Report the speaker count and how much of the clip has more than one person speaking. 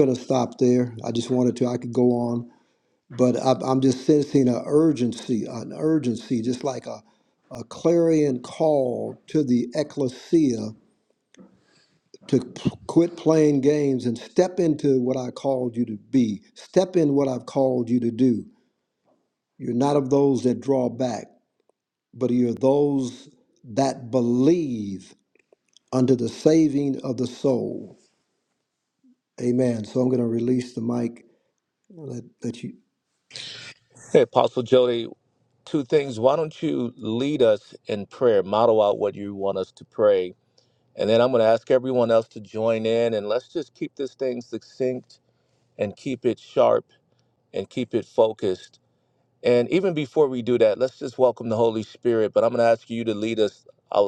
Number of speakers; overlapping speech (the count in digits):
2, no overlap